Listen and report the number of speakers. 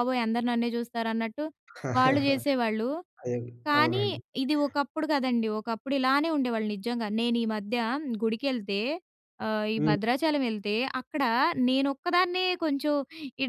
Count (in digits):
2